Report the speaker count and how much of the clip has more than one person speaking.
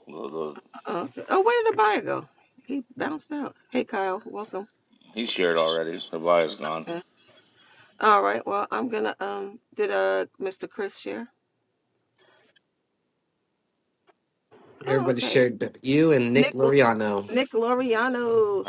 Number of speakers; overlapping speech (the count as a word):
three, about 4%